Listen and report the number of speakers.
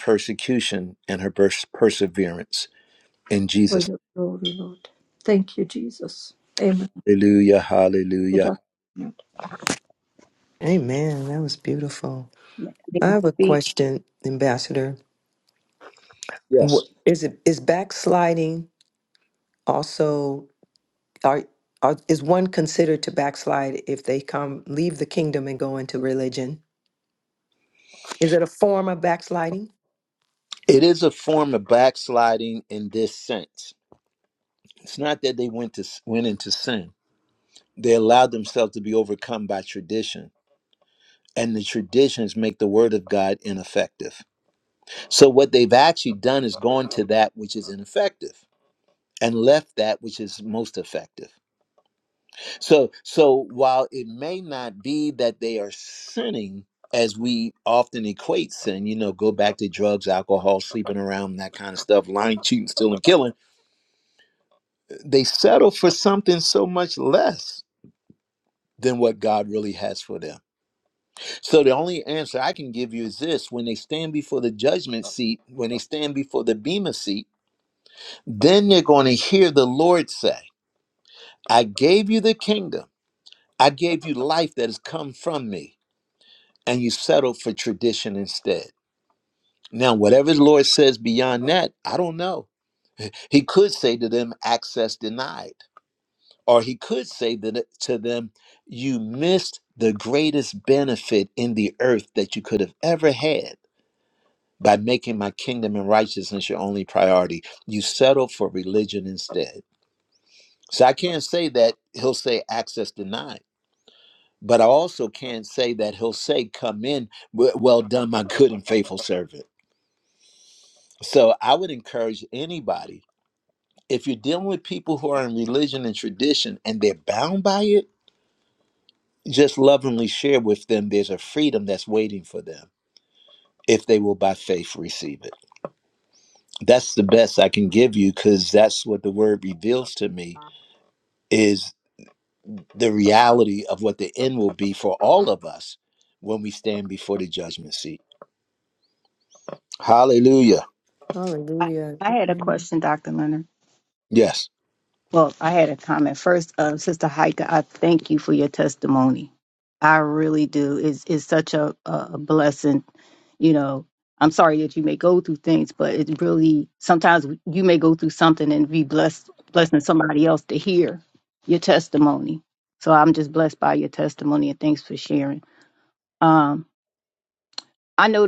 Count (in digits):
4